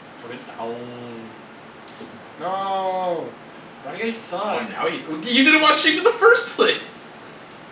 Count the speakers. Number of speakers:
two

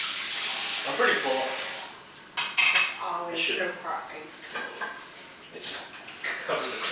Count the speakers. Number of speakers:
two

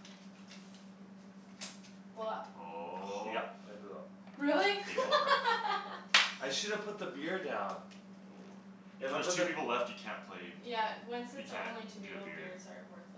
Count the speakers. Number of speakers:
three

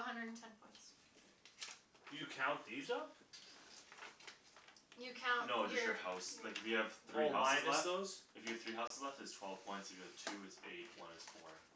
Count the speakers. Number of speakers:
three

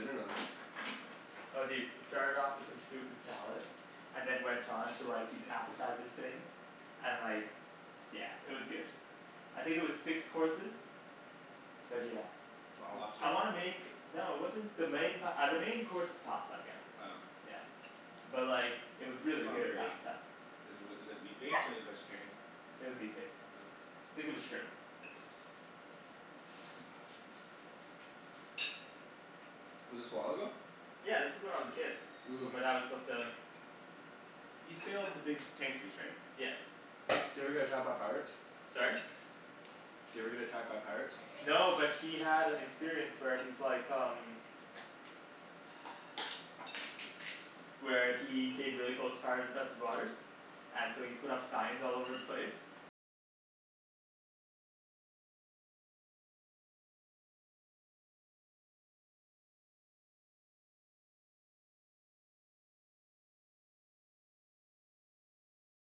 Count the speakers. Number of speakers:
three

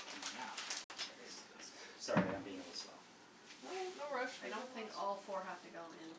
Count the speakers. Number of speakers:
three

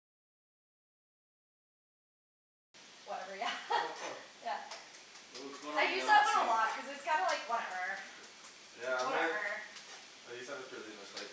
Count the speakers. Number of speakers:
three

